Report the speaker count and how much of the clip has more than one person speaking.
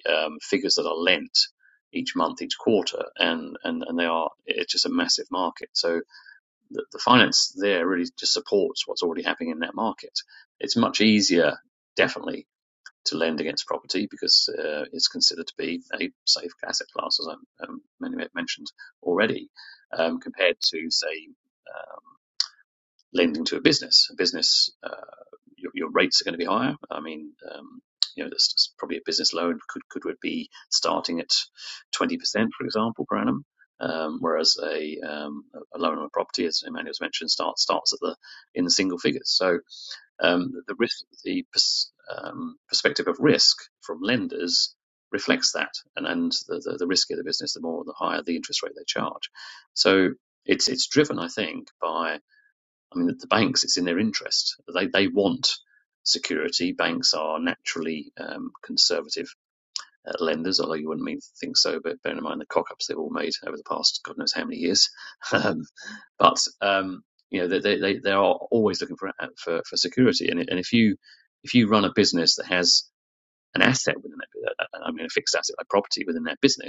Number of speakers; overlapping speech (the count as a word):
one, no overlap